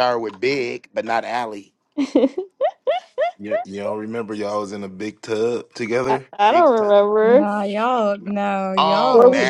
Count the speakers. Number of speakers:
four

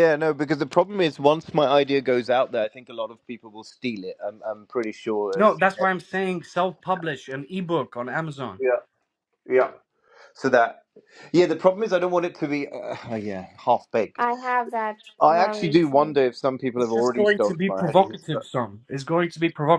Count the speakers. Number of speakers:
three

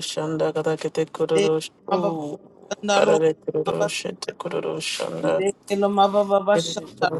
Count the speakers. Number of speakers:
two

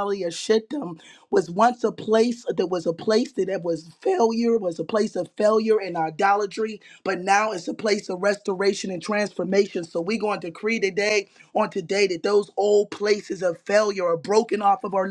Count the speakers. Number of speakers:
one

